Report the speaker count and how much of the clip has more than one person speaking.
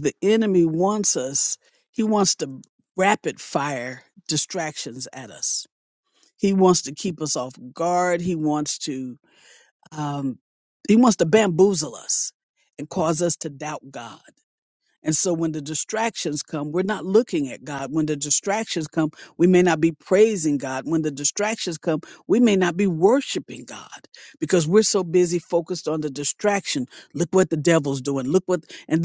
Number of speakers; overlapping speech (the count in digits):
1, no overlap